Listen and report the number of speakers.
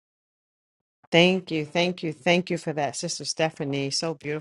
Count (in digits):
1